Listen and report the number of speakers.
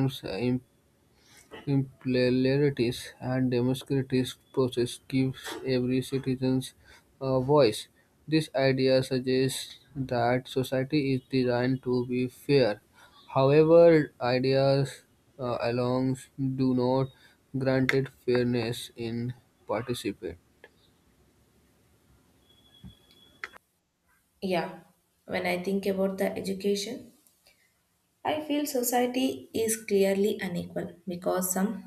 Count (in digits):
2